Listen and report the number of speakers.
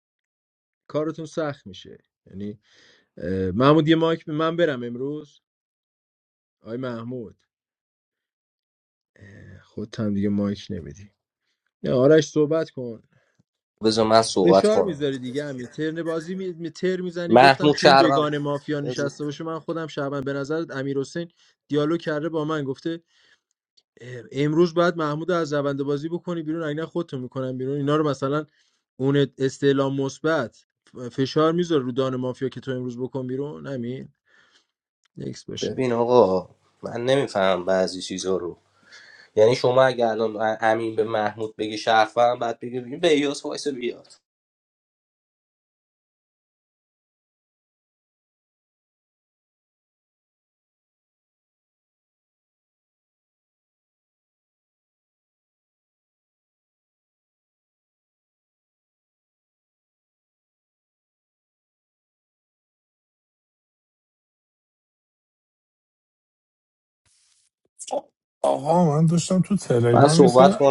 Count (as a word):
three